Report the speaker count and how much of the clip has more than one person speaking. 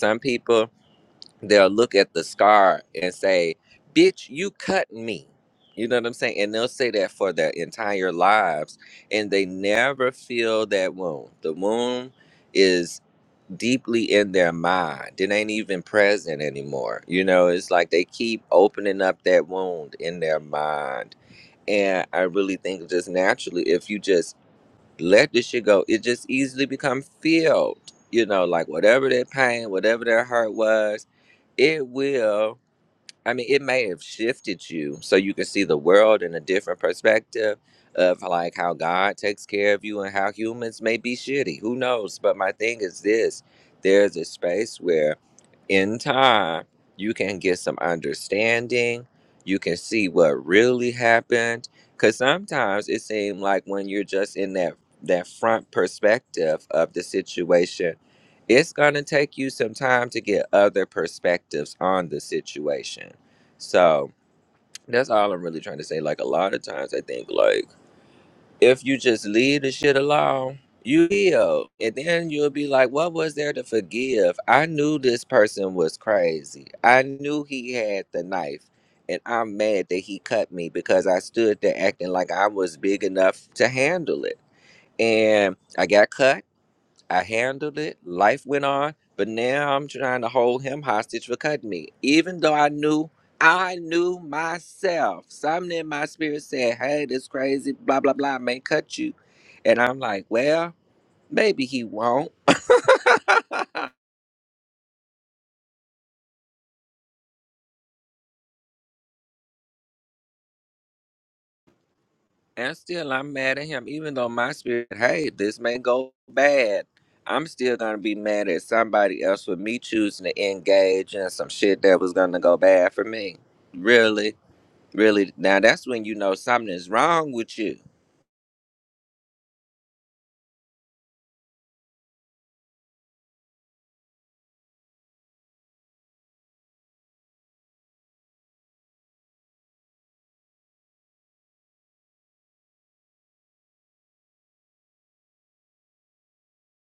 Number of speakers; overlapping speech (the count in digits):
1, no overlap